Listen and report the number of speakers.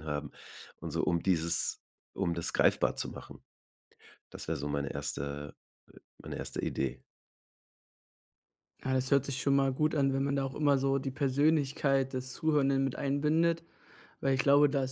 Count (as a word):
two